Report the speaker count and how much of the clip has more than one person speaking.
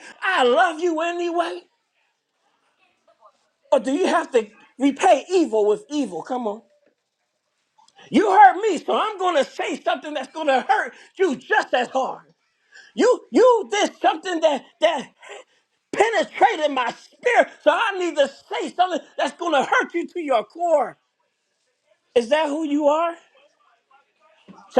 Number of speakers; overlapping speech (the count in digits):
1, no overlap